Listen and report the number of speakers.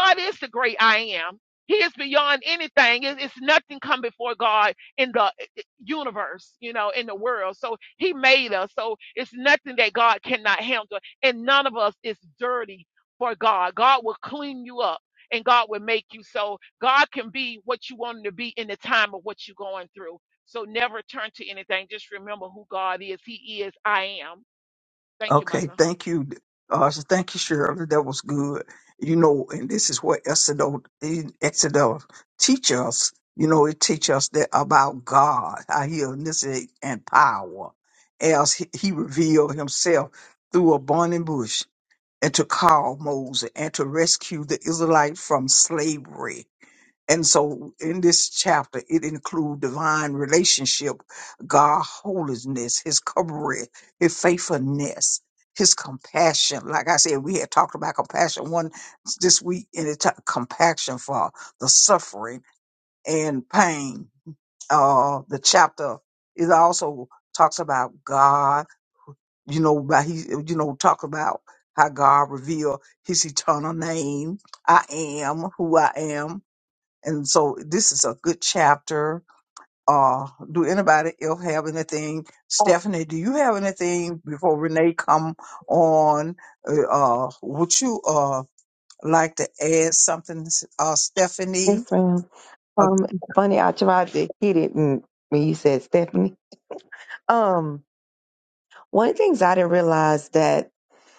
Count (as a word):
three